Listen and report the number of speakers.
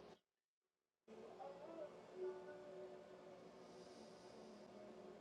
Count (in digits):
0